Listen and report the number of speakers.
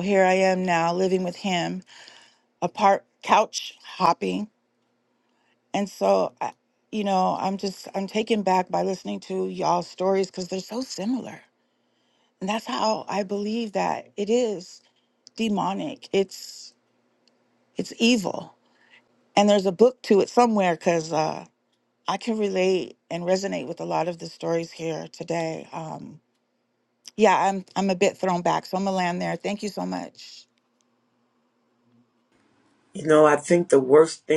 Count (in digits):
2